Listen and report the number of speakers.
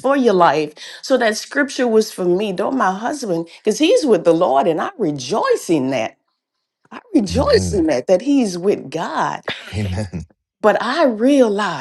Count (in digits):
2